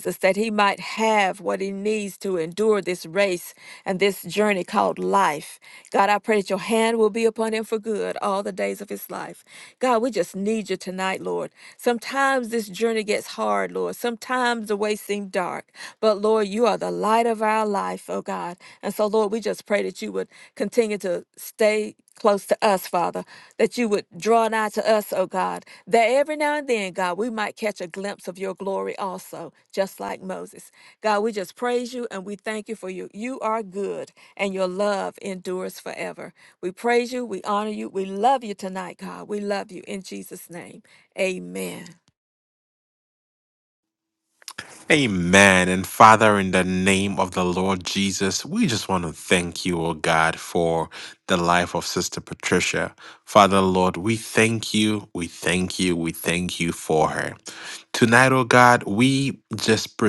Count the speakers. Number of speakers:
2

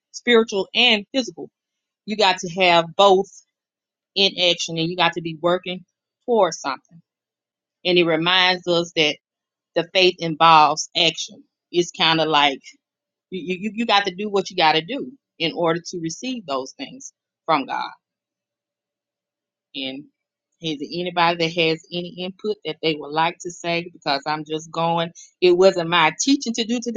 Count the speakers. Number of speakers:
1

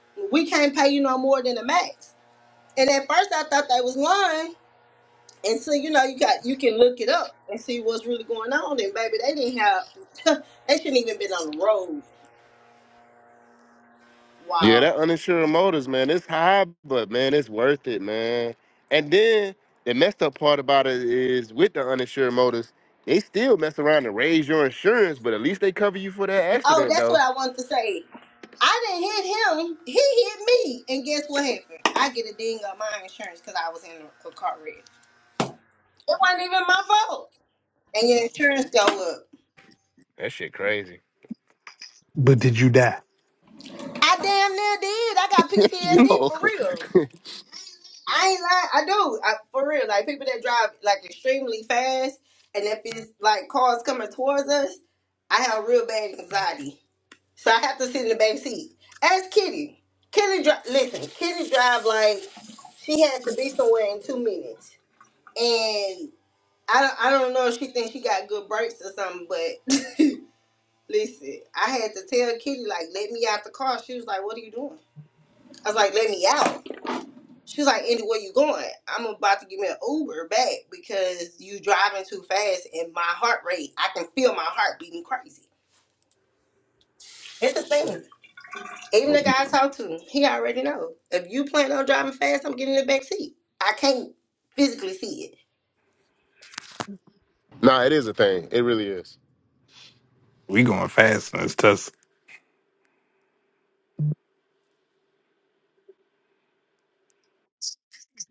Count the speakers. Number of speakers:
3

